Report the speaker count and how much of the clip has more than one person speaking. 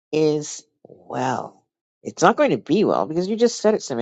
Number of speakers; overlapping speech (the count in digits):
1, no overlap